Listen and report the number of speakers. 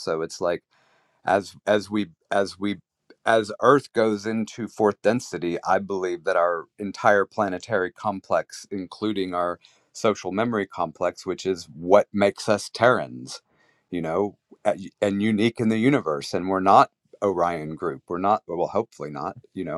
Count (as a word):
one